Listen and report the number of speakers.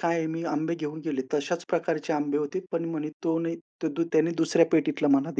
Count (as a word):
one